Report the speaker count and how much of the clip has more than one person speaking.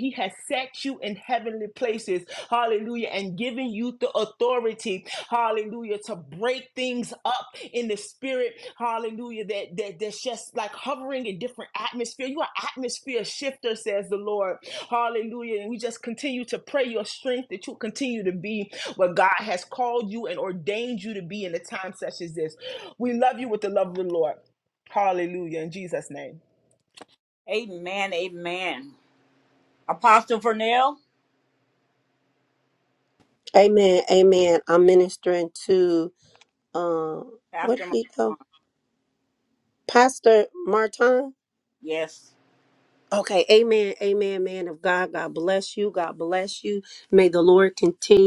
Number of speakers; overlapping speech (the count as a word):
three, about 1%